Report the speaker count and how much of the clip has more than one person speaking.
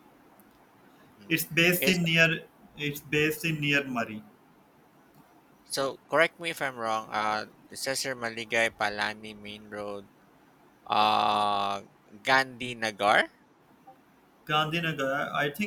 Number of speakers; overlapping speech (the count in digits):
2, about 1%